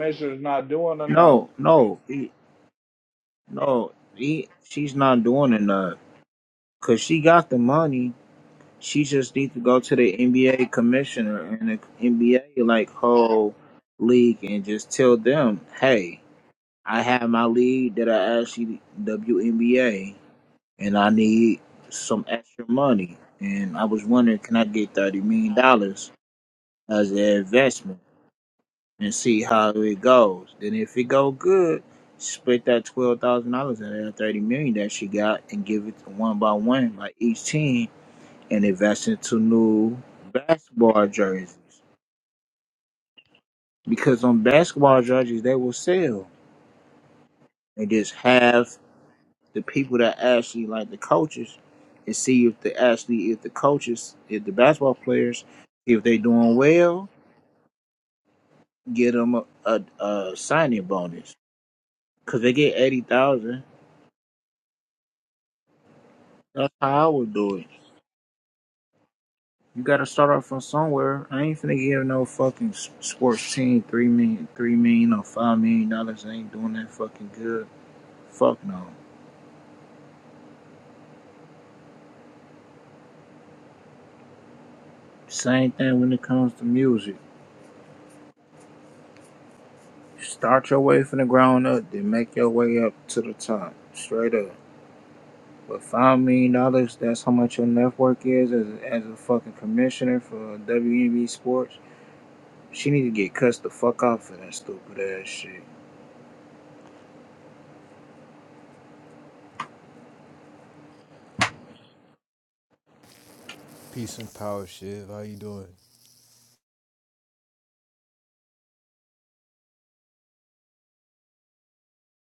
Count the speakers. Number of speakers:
three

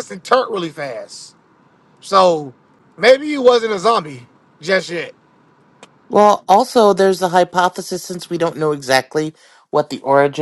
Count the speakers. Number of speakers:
two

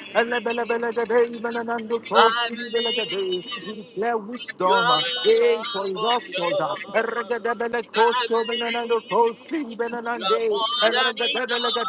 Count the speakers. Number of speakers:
two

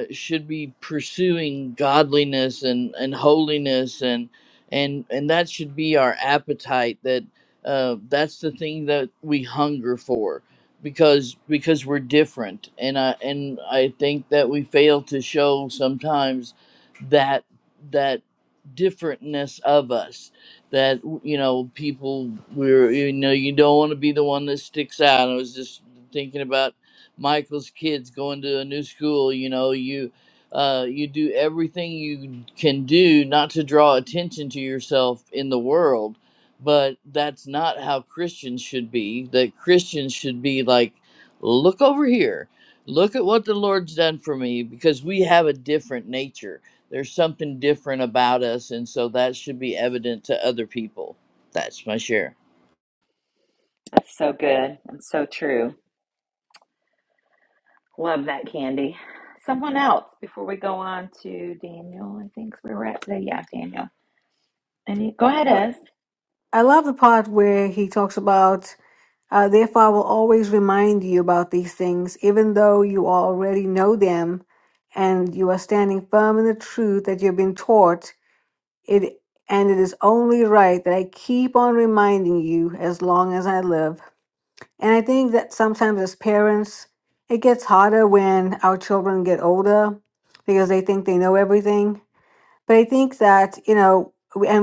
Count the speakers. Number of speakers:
three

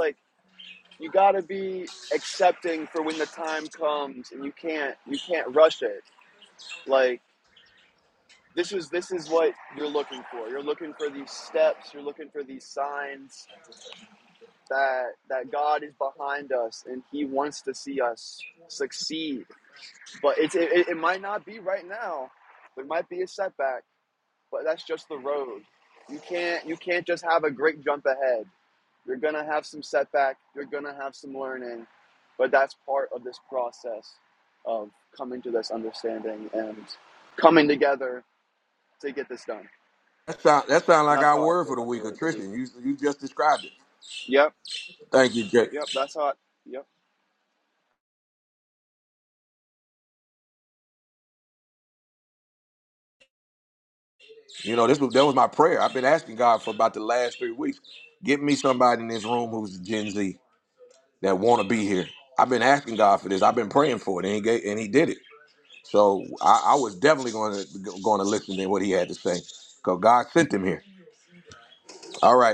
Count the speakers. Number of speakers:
two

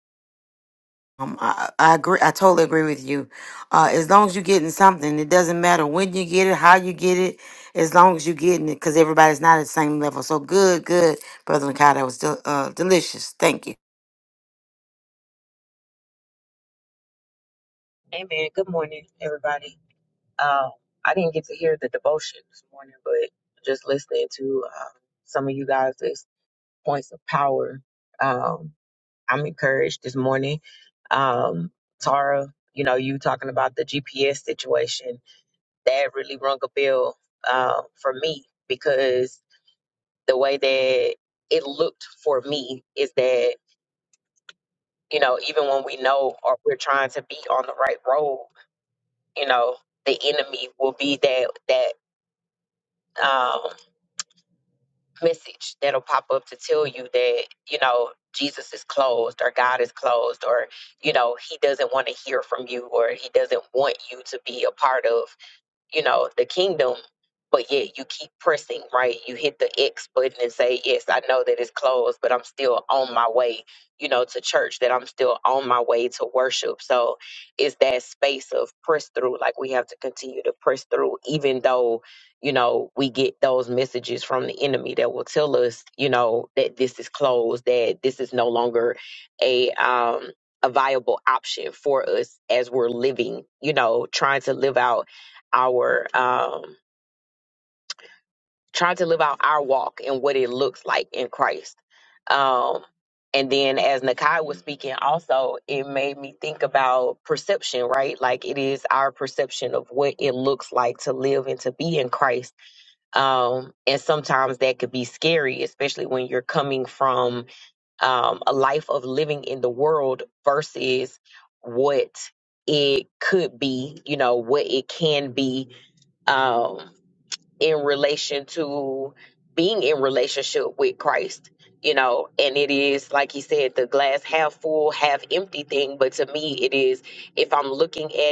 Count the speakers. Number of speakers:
two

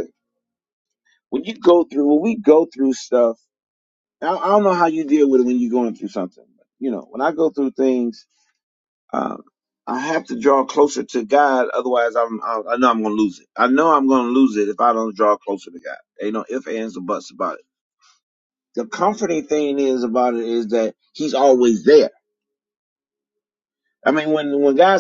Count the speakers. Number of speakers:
one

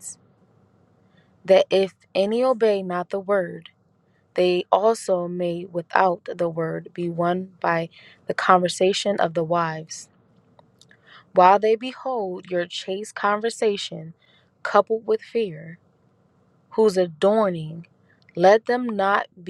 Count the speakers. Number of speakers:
one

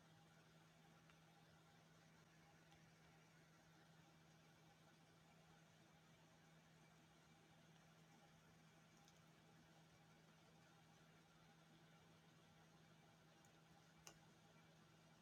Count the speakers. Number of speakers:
zero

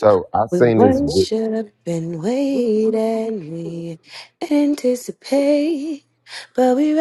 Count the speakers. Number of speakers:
two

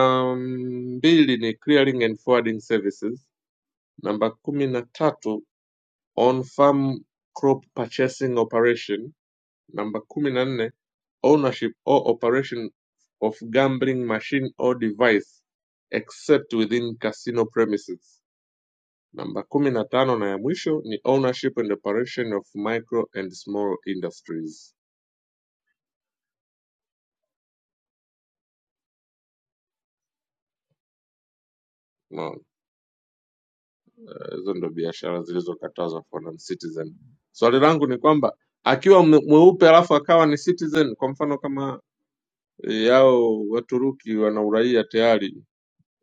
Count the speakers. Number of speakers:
one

